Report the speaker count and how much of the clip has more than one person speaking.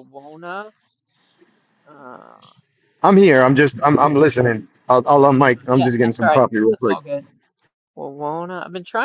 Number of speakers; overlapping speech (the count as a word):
two, about 22%